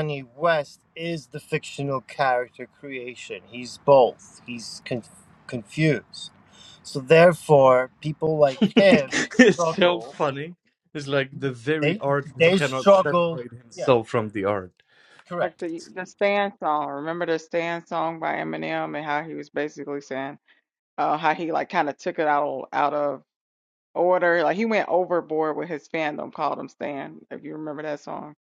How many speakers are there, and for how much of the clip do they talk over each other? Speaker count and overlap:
3, about 10%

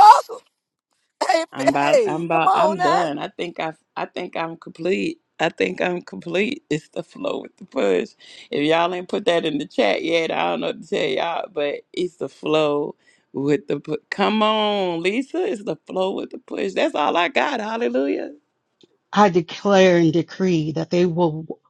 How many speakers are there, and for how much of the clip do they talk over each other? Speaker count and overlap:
3, about 7%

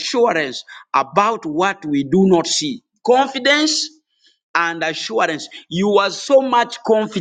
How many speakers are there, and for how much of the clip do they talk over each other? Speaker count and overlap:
1, no overlap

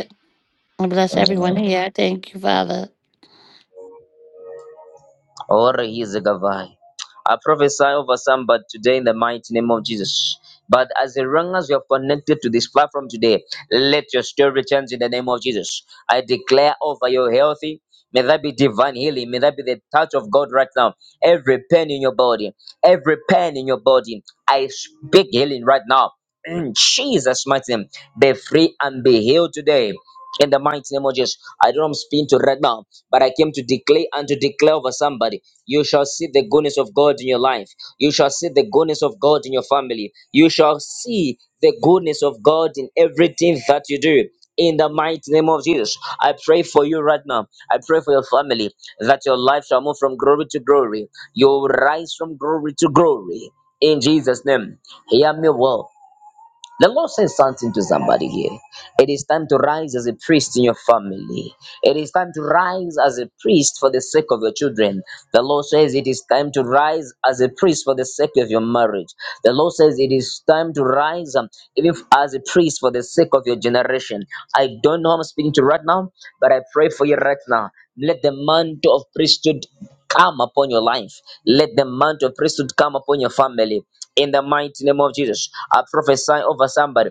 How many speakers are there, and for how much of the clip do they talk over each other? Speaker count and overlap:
2, about 1%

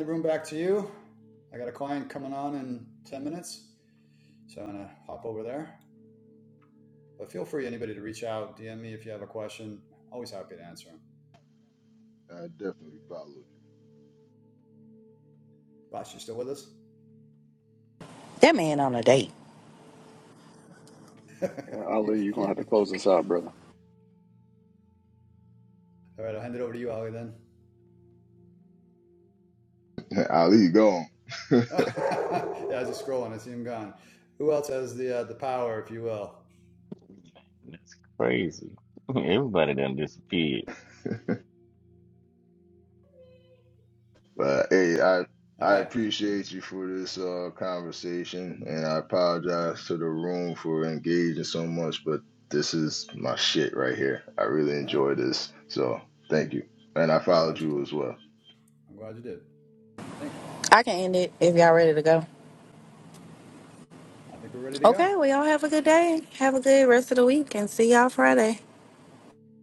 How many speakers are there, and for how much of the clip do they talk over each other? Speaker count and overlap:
5, about 2%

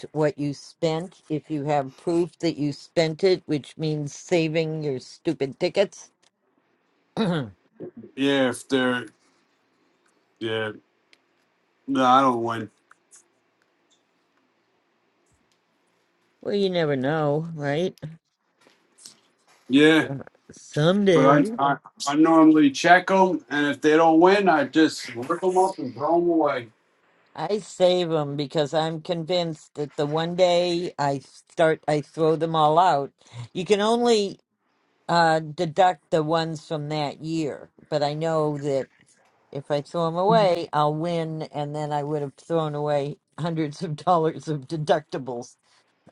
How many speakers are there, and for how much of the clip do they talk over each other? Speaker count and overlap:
2, about 1%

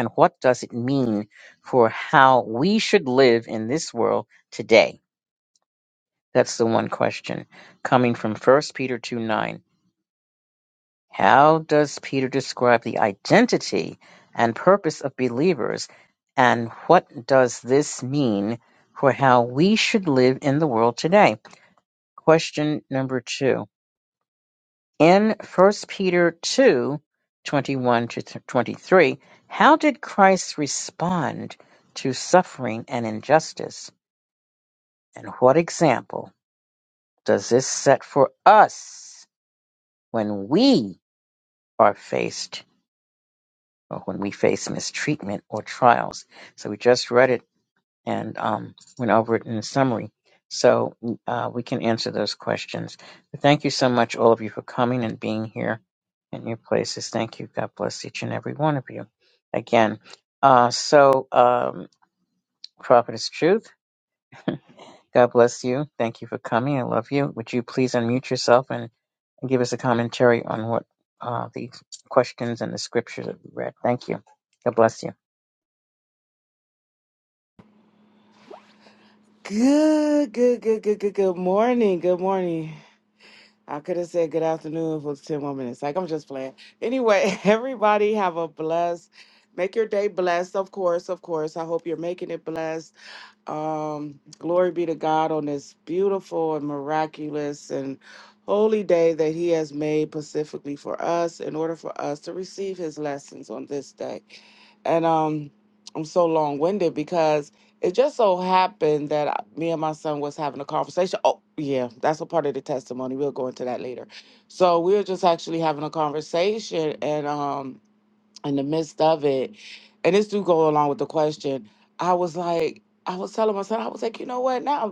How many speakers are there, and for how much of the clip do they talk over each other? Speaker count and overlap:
2, no overlap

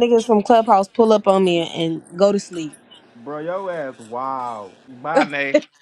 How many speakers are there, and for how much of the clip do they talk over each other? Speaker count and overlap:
2, about 1%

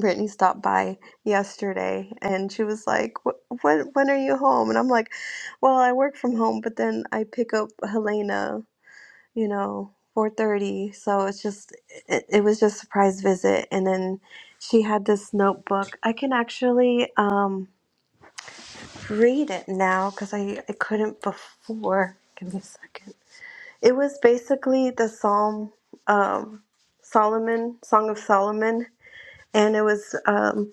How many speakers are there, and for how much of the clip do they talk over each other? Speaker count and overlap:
1, no overlap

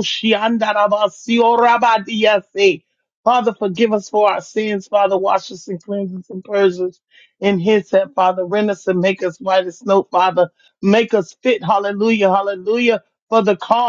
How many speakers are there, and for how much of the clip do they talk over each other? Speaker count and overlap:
1, no overlap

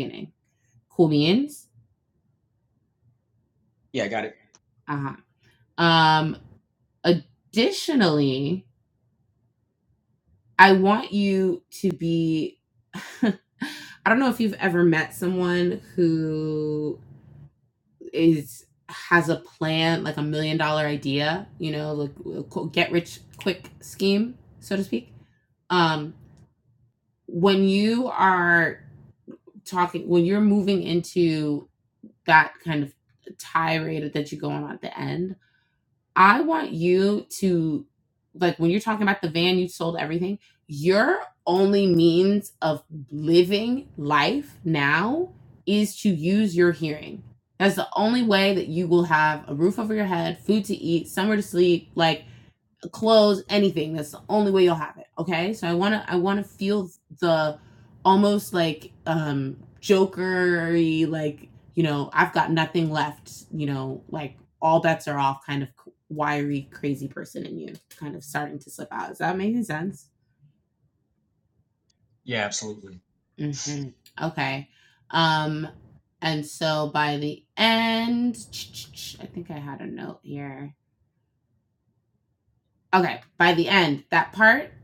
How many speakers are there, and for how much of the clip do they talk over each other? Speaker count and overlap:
2, no overlap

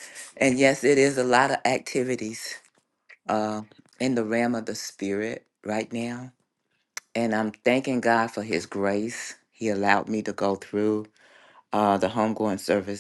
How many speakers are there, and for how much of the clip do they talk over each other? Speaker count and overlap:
1, no overlap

